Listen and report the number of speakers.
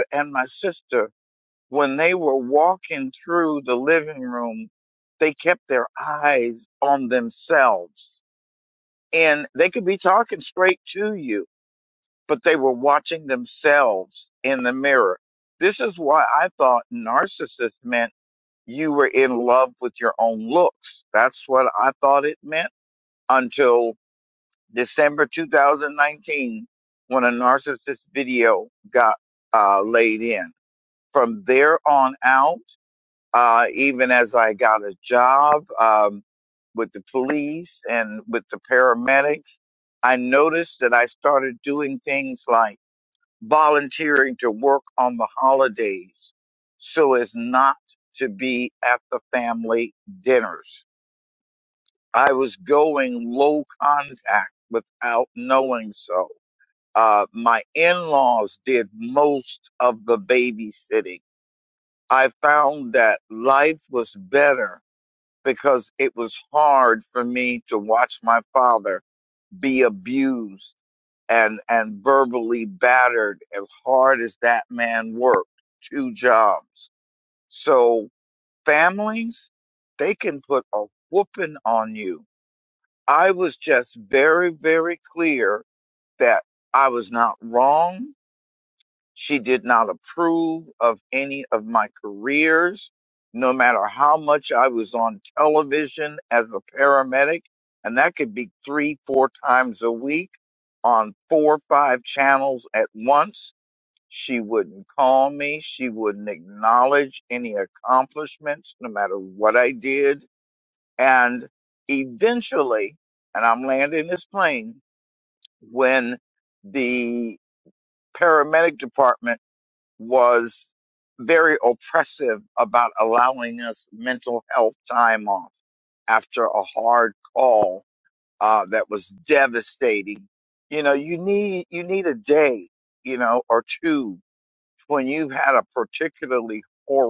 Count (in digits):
1